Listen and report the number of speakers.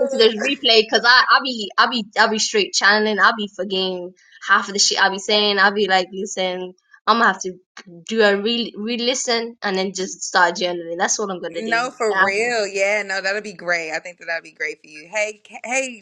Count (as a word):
two